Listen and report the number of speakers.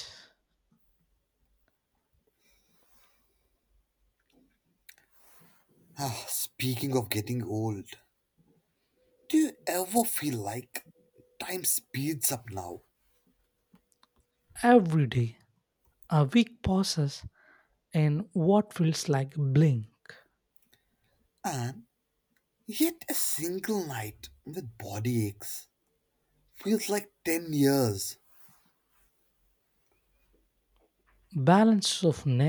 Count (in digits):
2